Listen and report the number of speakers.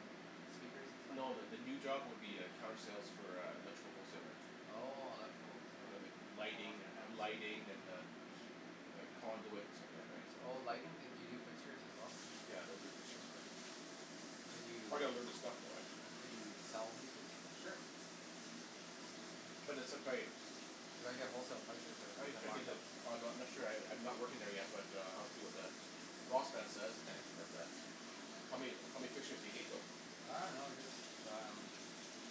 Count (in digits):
2